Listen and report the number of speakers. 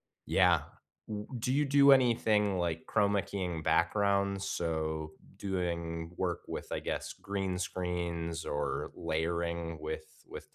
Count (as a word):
one